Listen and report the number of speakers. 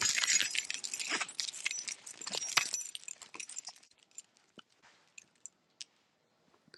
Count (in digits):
0